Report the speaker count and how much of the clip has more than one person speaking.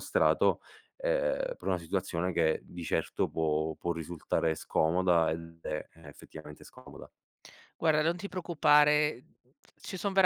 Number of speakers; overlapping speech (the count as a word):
two, no overlap